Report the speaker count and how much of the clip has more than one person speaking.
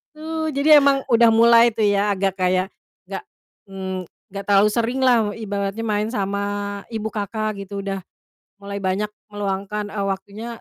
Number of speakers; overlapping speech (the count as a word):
one, no overlap